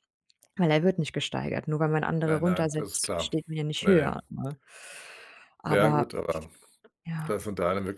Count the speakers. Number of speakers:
2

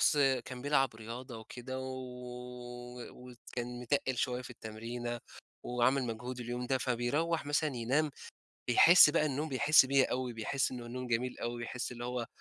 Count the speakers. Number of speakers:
1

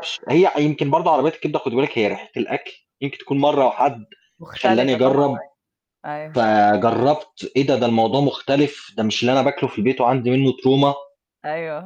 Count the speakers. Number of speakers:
2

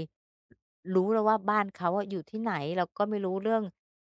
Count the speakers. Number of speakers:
1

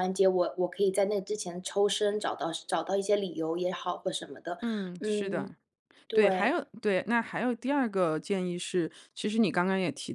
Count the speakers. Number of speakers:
2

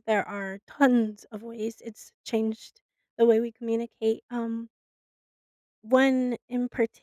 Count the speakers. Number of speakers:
1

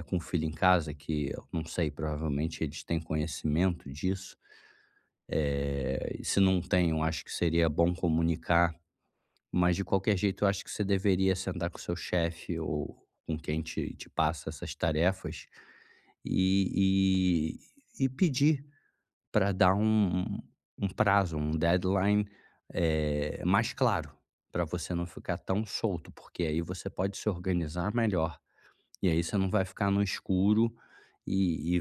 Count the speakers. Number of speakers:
1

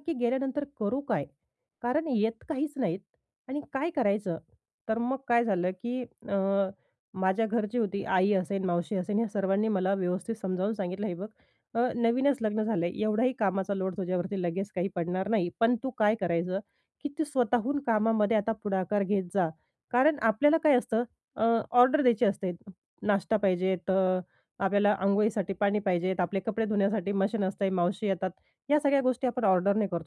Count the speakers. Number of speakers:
1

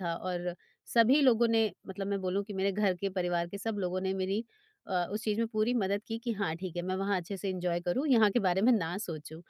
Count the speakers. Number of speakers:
1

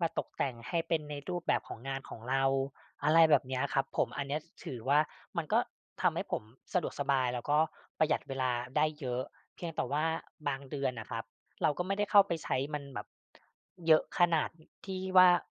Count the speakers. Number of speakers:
1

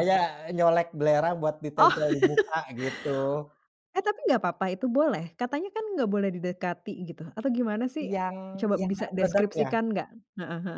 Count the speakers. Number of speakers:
2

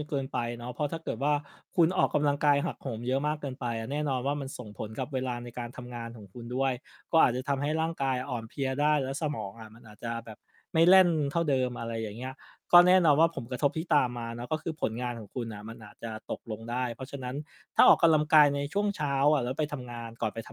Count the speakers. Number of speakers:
1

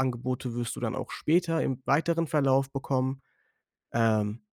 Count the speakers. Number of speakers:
1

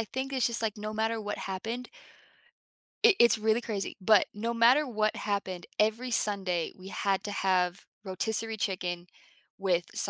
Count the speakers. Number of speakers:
1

